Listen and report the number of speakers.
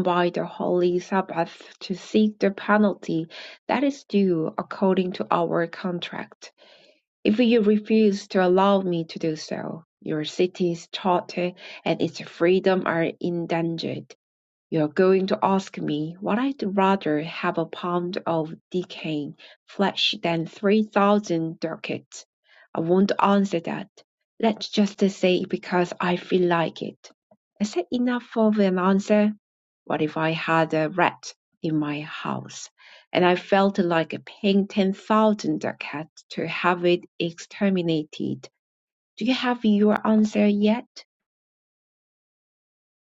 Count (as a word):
one